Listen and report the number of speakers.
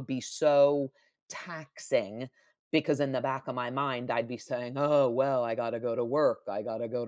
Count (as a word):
one